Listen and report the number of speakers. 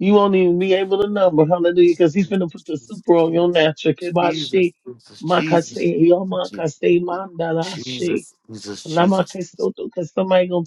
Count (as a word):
two